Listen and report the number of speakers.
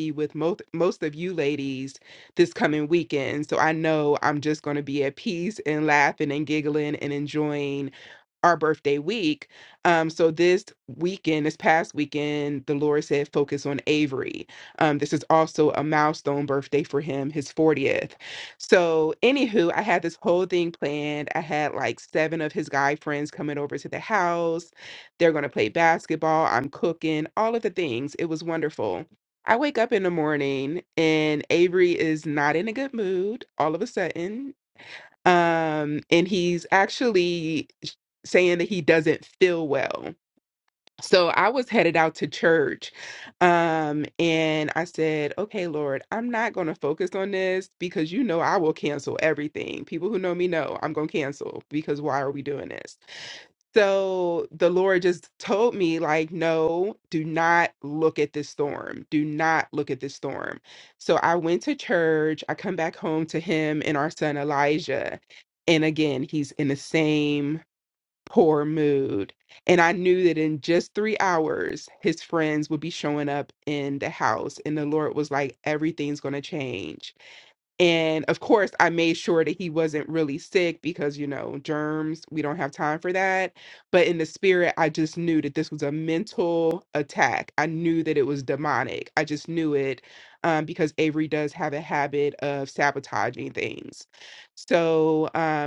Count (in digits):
1